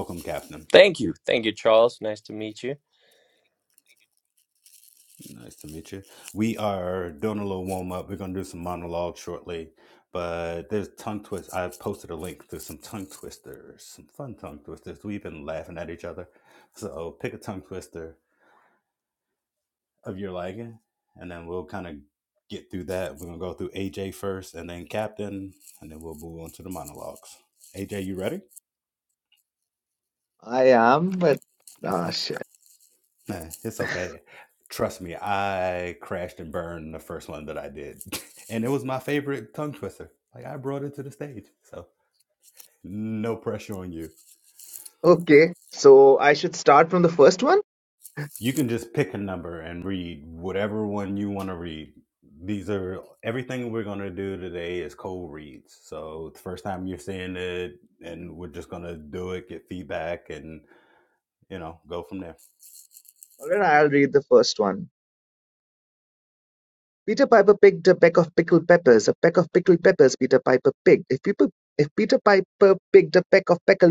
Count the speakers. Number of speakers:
3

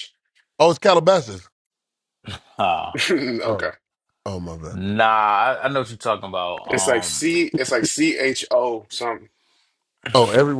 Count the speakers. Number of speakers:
3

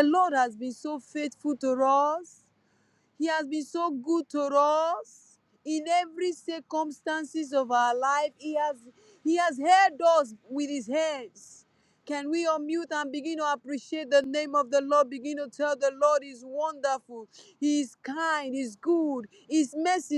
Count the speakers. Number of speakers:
1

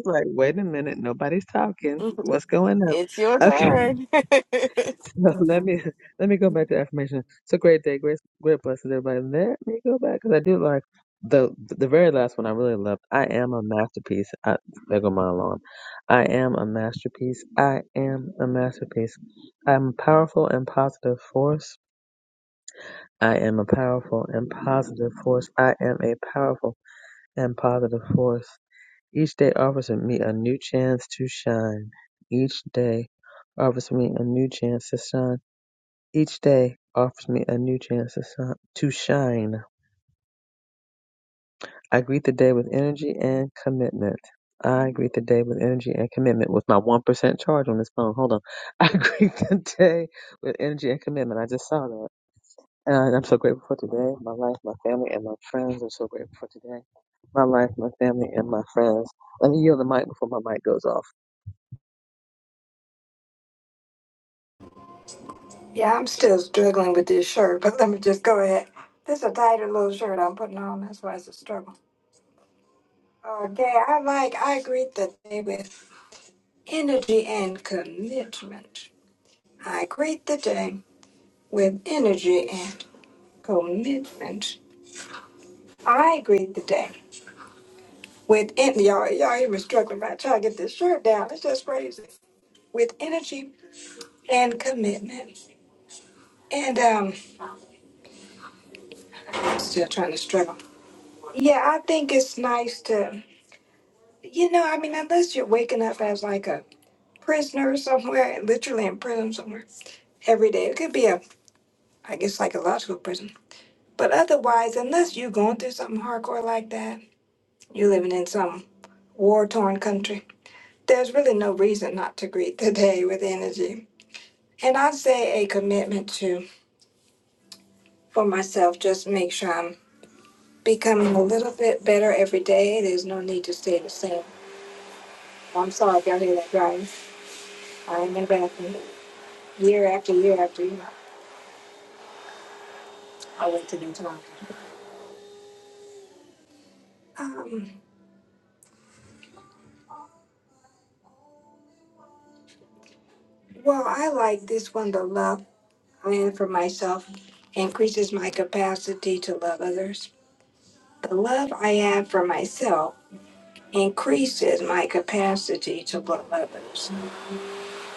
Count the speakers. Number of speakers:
3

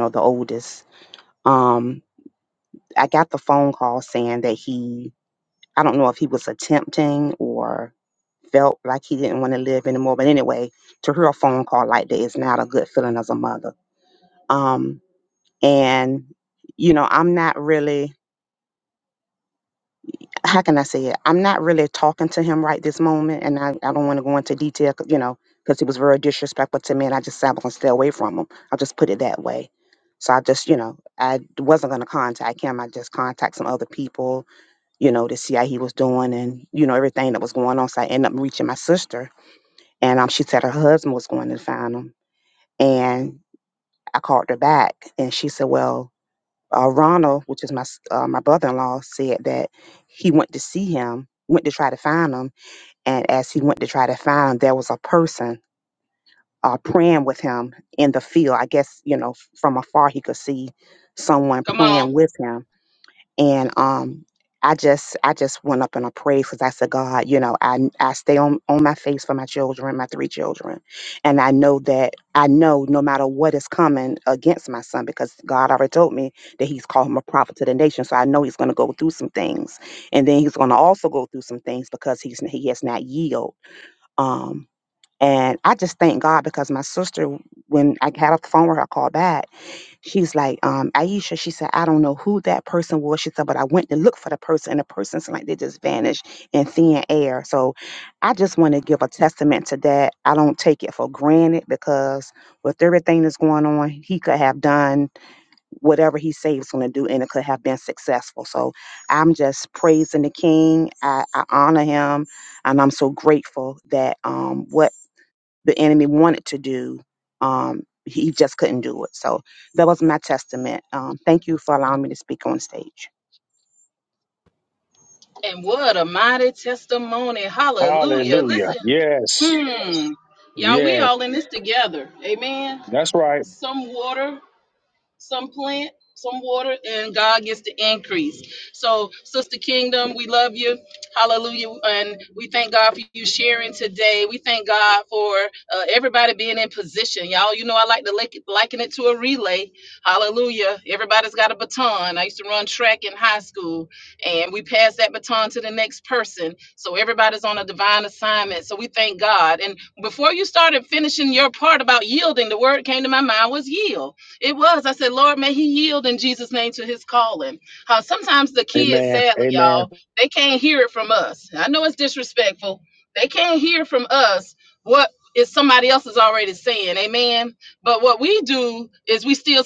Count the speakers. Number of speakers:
3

